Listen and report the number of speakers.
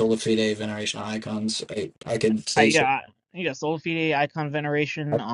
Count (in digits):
2